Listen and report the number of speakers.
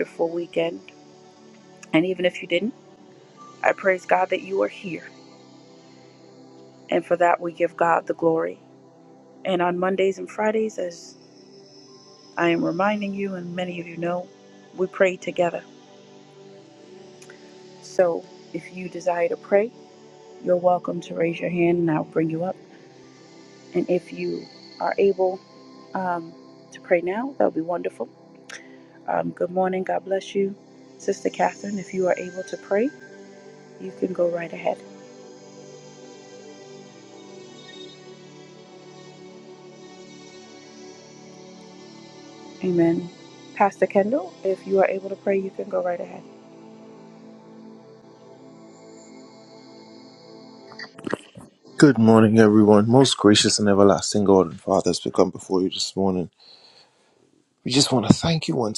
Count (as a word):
two